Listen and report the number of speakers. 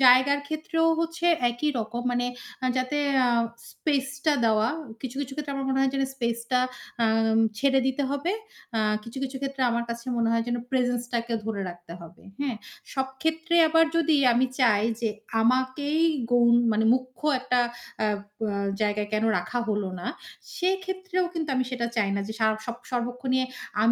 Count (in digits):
1